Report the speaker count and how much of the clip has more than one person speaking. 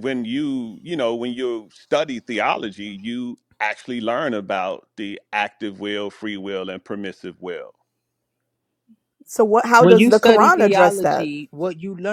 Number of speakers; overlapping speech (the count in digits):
3, about 12%